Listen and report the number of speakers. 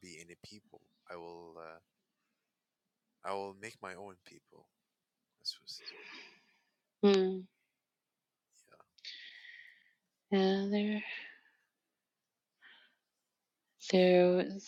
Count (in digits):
2